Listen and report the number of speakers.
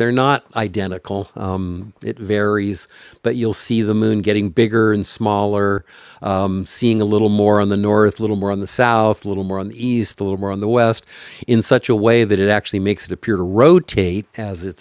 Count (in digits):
1